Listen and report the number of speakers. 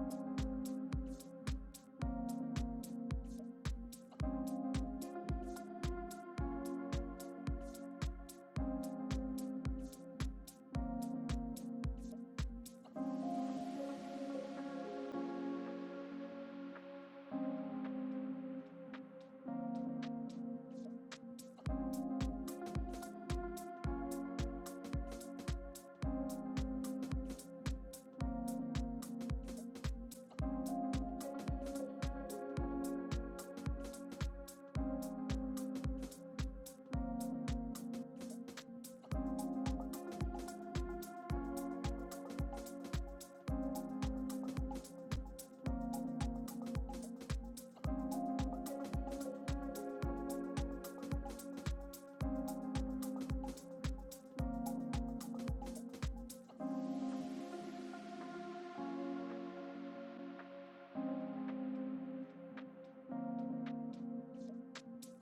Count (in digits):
0